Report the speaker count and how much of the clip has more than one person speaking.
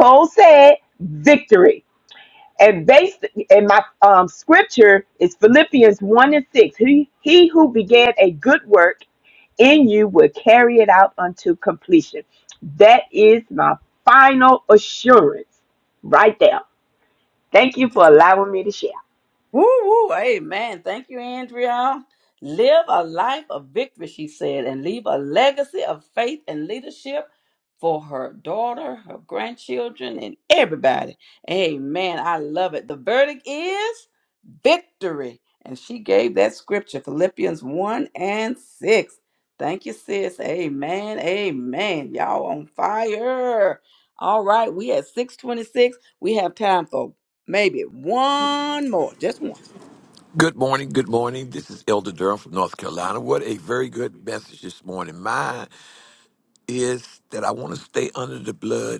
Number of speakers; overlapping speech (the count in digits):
3, no overlap